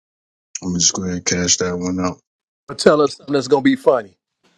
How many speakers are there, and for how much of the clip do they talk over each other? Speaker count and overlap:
2, no overlap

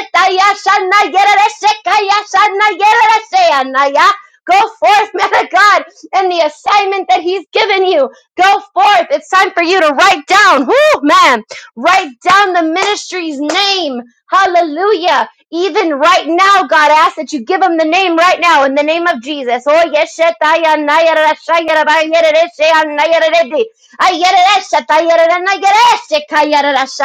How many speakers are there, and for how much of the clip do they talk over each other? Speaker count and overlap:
1, no overlap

